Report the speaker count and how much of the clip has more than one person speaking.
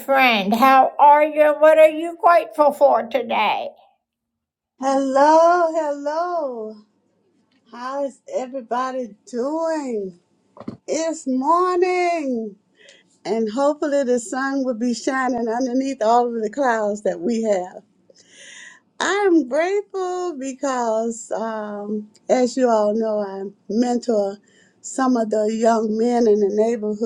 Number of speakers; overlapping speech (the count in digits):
2, no overlap